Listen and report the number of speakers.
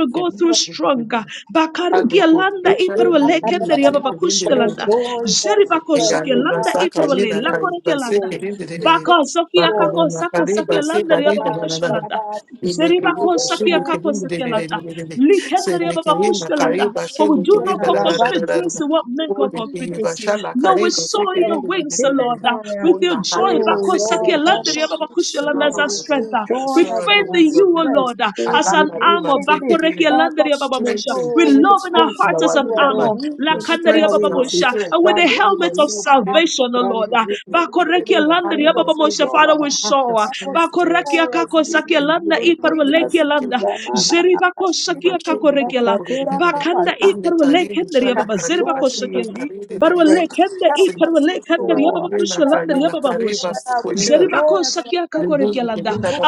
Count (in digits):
3